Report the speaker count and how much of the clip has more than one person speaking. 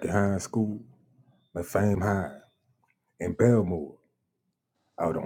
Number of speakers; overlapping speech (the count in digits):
1, no overlap